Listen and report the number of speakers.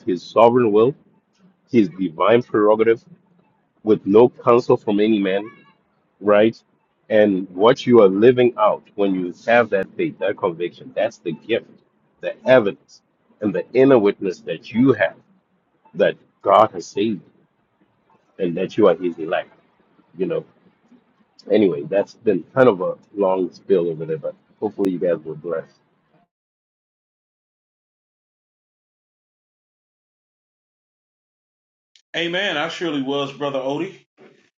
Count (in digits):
2